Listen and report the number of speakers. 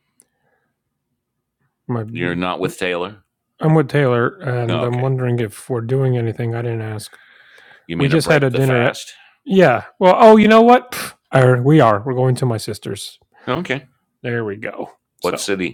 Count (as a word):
two